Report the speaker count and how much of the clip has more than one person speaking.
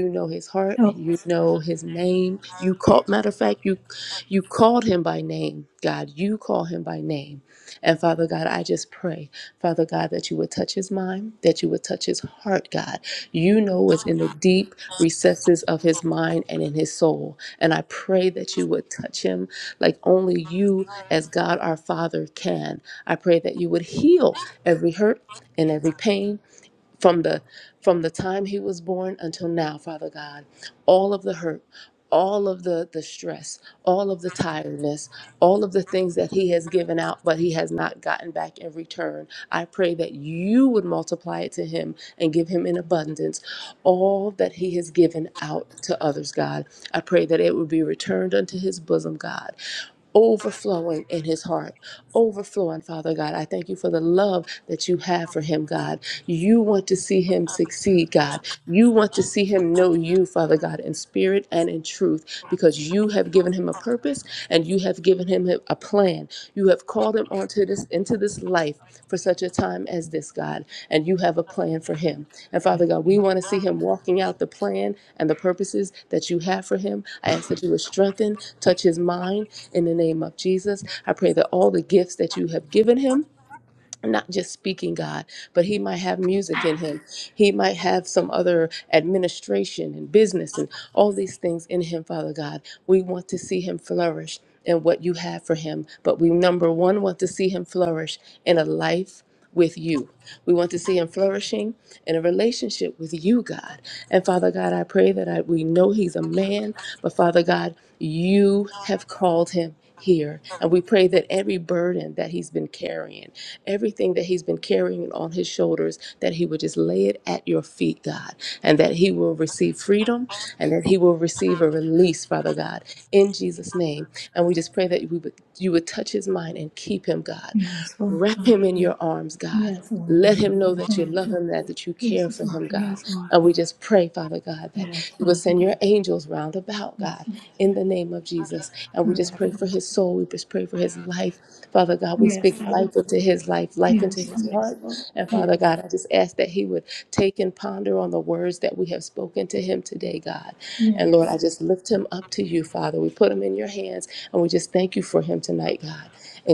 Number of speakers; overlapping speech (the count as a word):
two, about 4%